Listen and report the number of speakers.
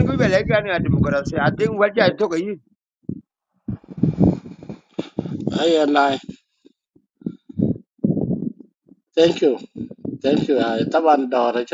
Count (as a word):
two